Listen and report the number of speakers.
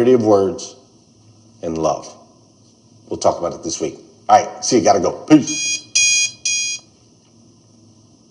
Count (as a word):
one